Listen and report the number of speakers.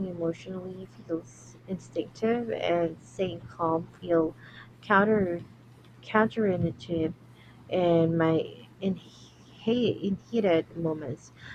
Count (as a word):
one